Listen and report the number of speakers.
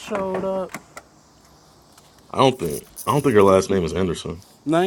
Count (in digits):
2